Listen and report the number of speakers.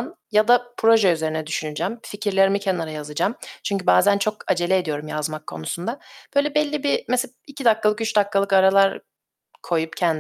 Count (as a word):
one